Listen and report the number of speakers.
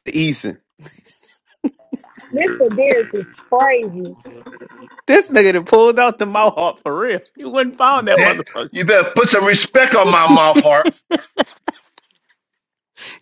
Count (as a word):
three